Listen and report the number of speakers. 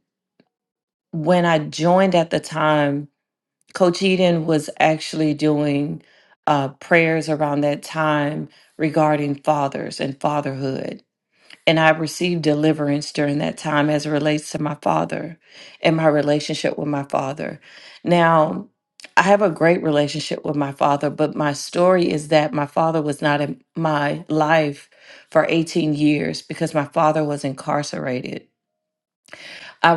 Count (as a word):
one